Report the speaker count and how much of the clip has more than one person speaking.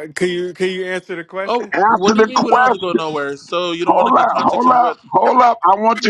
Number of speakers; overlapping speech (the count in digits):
3, about 44%